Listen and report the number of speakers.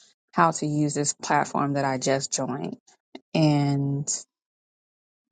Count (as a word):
one